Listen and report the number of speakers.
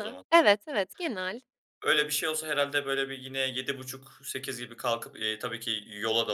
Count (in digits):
2